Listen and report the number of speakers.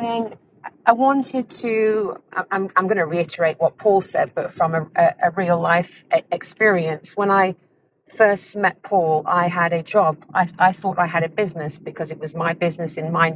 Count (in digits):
1